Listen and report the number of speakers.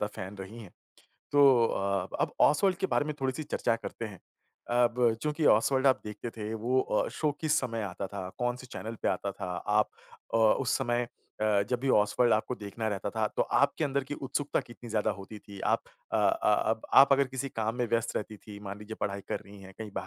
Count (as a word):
one